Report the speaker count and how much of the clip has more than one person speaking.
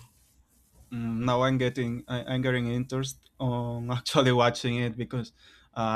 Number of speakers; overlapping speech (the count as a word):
one, no overlap